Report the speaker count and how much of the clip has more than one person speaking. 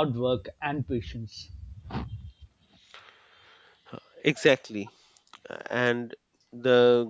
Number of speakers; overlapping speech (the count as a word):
two, no overlap